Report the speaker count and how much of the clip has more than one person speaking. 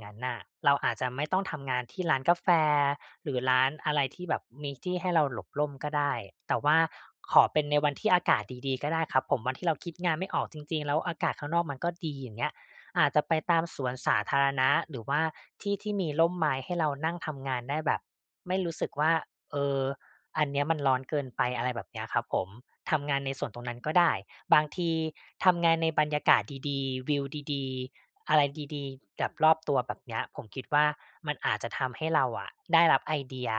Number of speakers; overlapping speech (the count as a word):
one, no overlap